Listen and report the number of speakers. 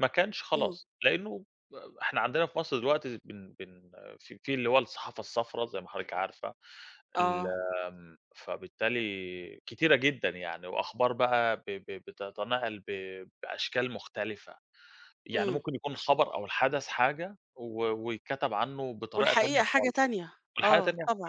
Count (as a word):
two